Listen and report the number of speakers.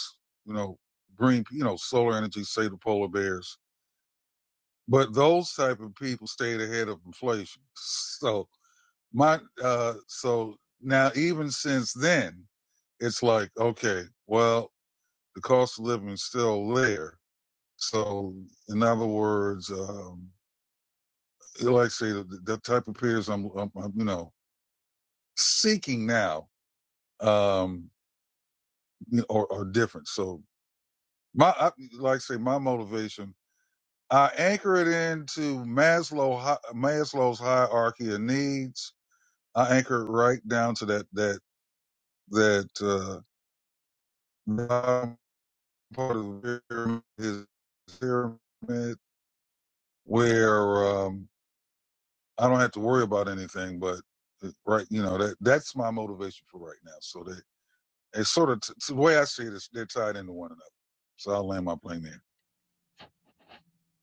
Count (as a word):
one